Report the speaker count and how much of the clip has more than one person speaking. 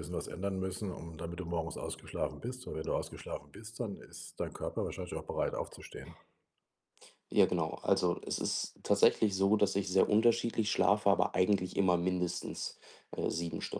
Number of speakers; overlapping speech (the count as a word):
two, no overlap